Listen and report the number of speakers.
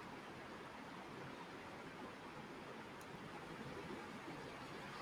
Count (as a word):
zero